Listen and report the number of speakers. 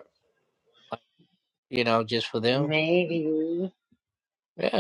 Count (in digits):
2